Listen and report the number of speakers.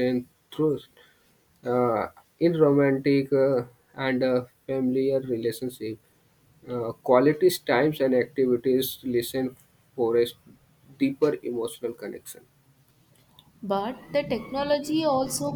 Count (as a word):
two